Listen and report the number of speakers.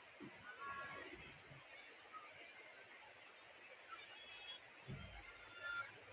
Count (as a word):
zero